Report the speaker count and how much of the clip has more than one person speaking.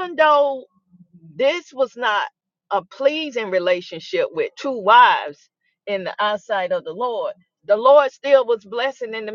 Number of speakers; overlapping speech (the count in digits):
1, no overlap